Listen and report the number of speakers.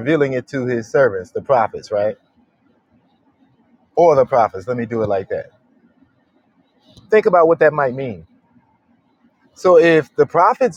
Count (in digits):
1